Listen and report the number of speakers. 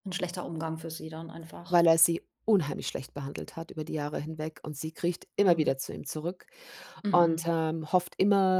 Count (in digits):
2